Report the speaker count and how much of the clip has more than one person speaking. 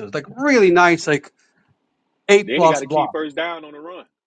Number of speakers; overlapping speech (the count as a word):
two, about 15%